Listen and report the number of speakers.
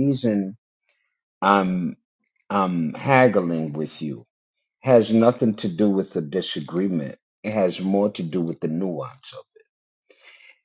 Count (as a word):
one